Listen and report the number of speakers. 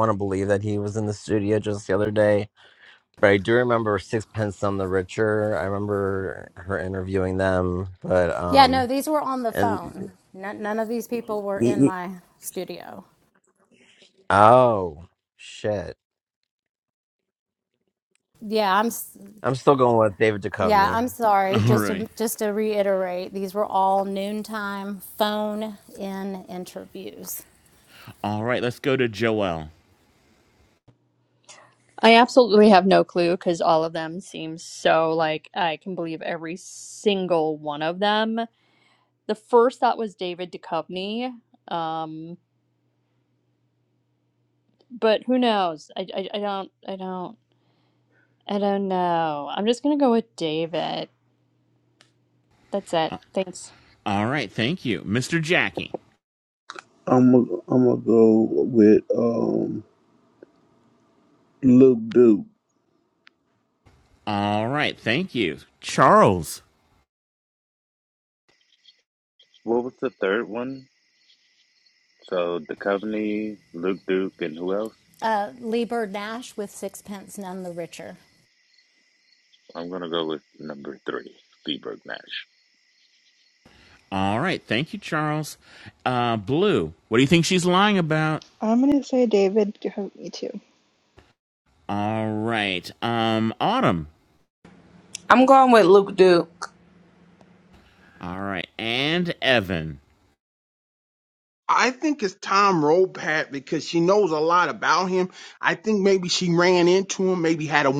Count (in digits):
9